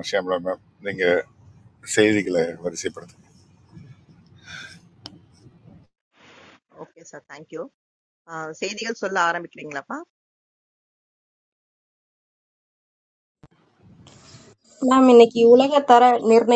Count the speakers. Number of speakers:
3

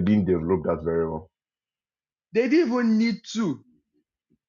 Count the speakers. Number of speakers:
2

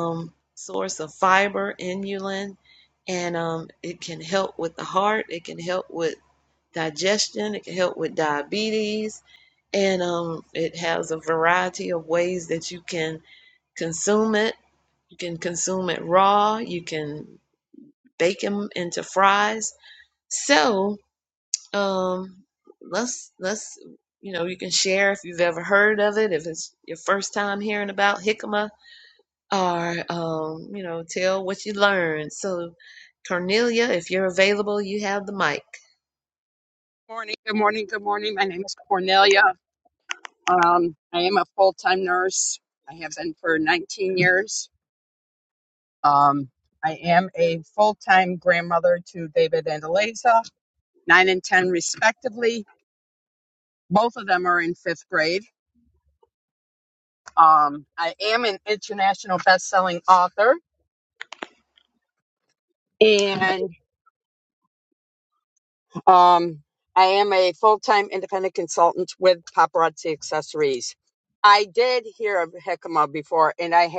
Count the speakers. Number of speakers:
2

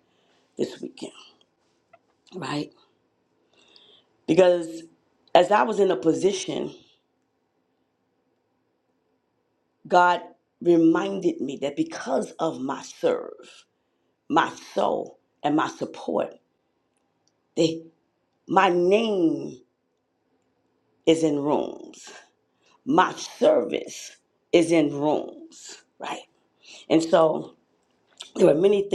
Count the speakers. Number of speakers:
1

